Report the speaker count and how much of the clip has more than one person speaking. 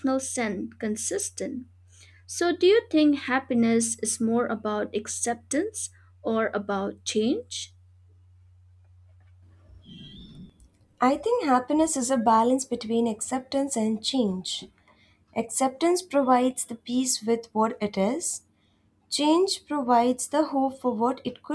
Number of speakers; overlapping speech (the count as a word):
two, no overlap